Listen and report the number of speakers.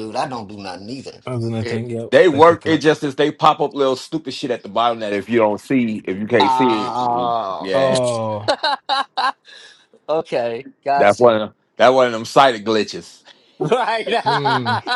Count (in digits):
3